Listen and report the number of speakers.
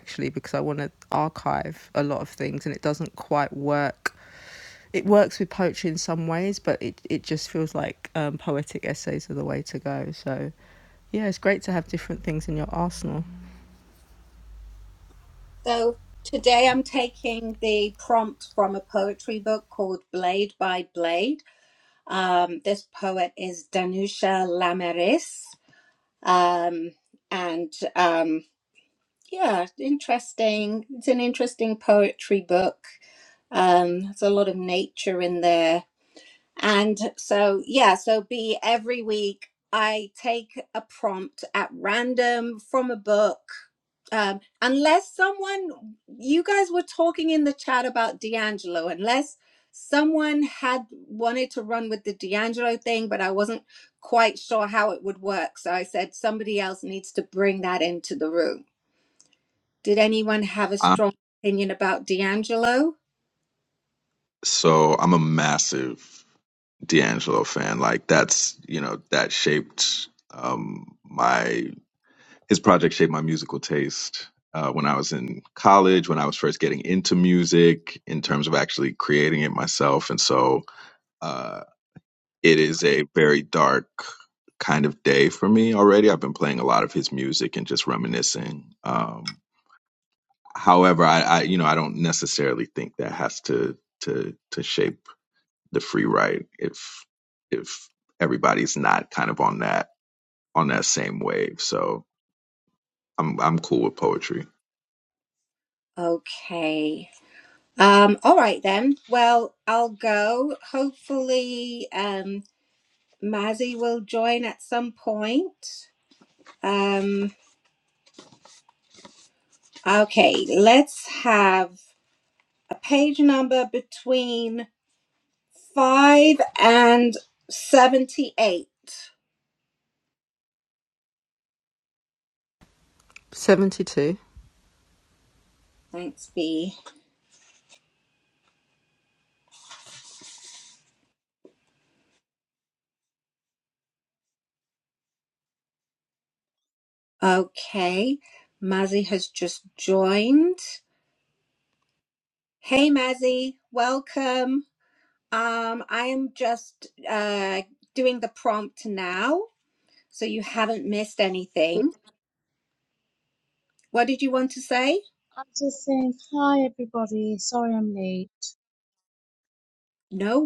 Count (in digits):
4